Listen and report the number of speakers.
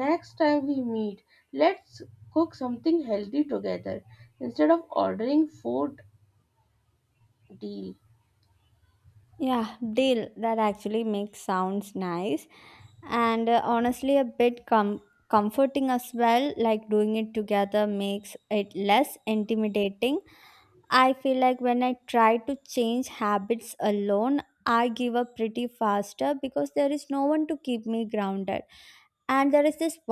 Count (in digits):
2